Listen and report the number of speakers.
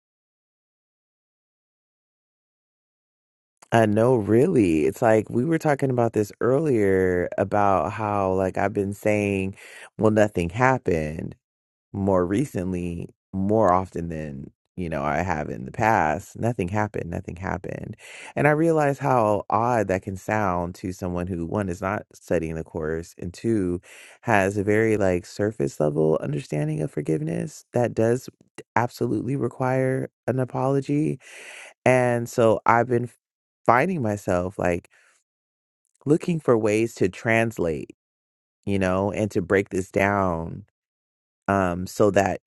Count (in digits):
1